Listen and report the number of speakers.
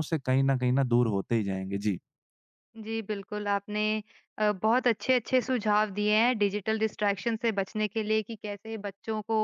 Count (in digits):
2